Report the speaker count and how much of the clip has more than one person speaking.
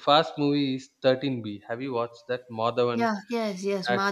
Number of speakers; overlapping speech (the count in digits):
2, about 11%